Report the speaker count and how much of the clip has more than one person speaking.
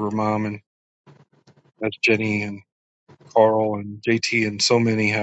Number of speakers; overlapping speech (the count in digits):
1, no overlap